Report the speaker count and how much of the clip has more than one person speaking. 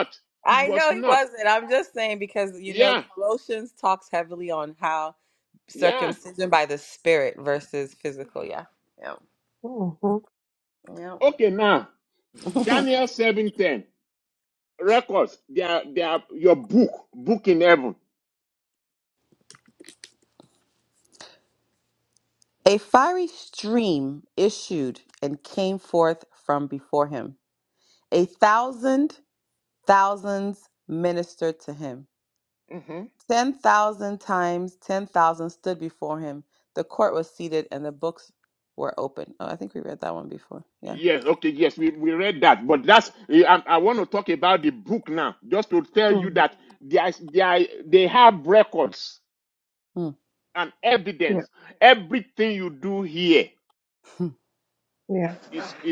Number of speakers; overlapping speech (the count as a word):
three, about 3%